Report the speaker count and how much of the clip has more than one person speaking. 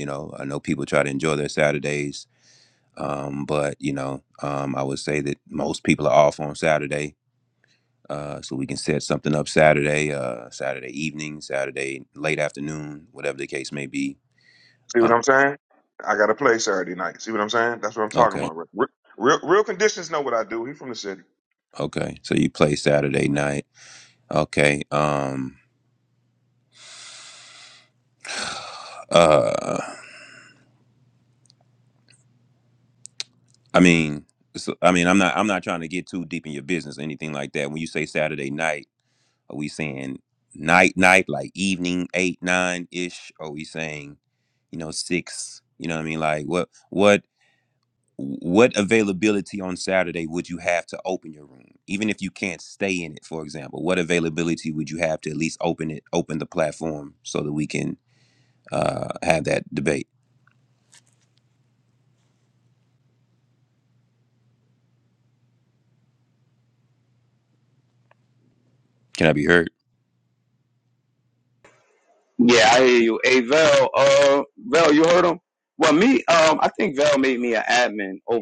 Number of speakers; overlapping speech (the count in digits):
3, about 1%